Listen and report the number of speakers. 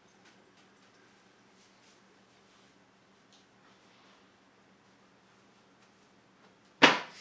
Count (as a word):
zero